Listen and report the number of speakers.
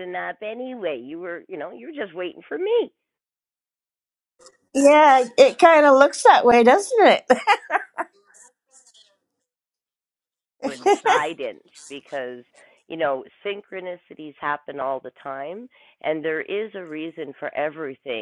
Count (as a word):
two